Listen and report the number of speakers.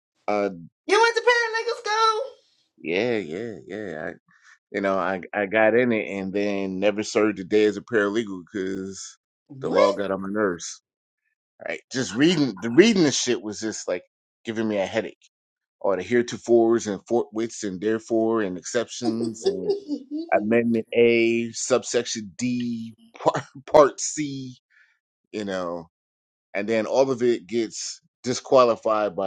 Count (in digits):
2